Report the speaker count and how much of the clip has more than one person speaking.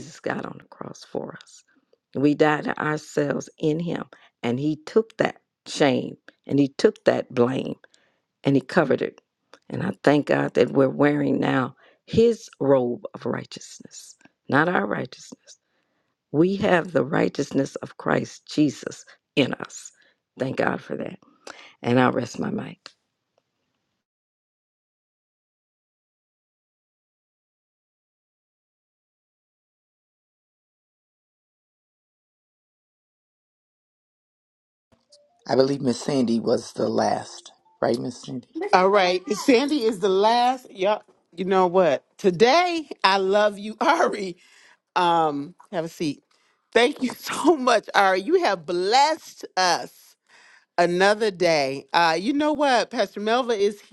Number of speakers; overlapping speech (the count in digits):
3, no overlap